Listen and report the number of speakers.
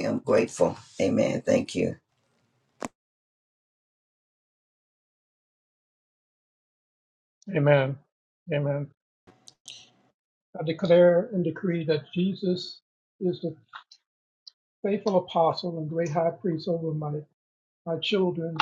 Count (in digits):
2